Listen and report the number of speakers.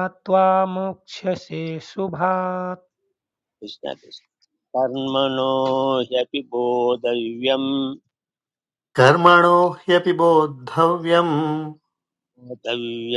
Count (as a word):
three